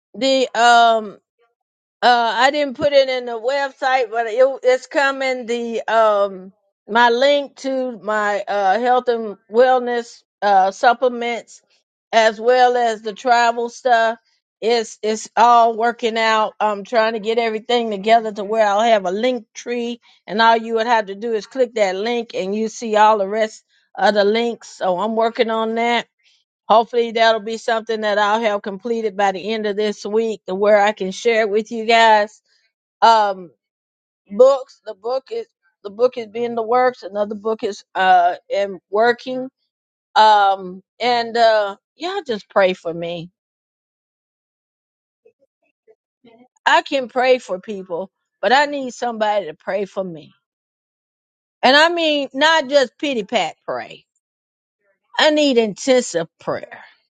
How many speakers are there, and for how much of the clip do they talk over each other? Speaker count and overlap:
one, no overlap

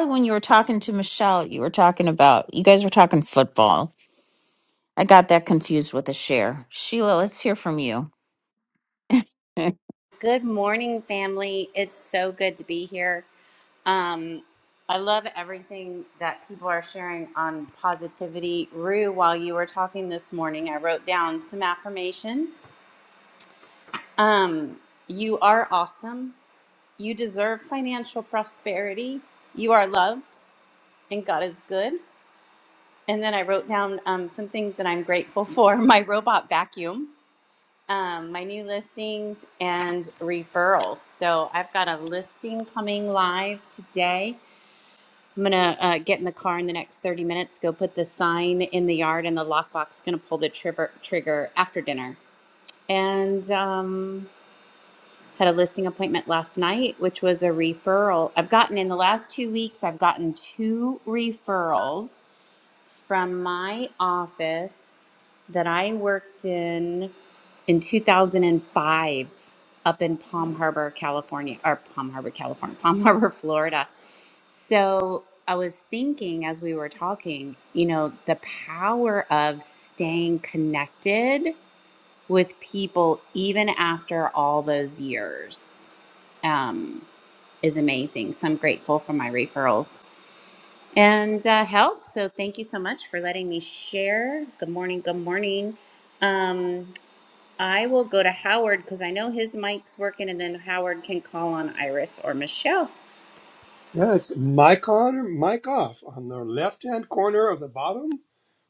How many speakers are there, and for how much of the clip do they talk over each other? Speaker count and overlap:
three, no overlap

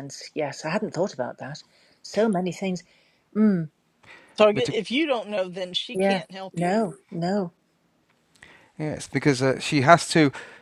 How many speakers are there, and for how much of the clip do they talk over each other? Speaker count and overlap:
three, about 6%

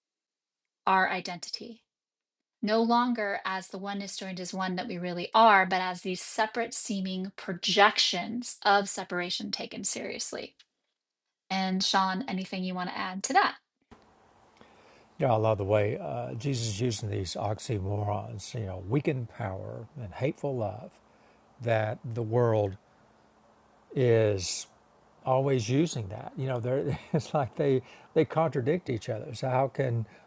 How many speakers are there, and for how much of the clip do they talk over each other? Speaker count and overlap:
two, no overlap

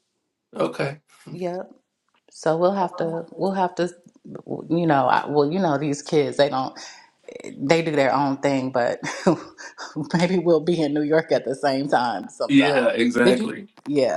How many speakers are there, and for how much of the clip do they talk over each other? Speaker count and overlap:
two, about 5%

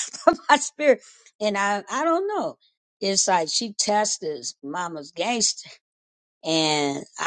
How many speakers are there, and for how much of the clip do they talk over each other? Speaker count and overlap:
one, no overlap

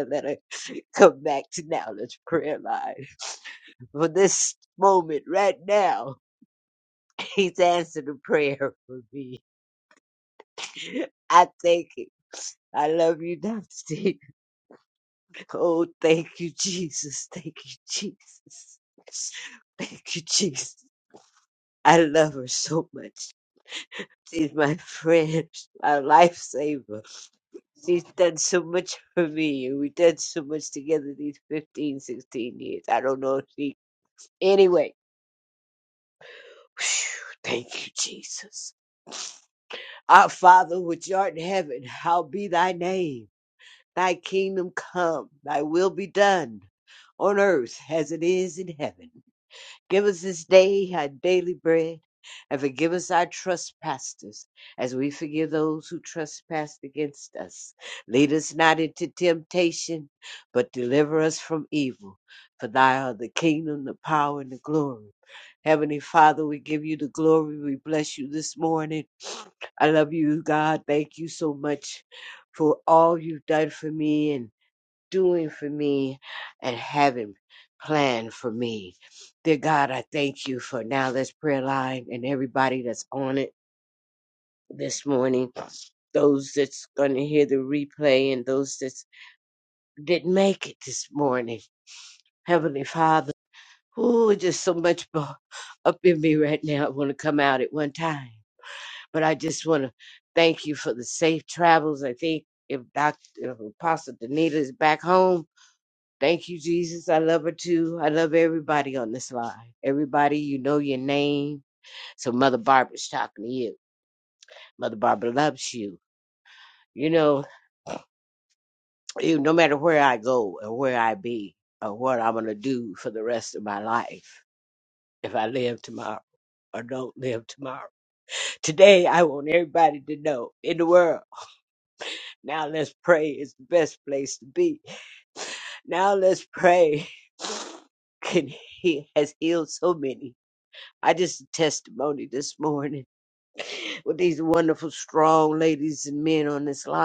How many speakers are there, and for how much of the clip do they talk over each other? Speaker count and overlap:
one, no overlap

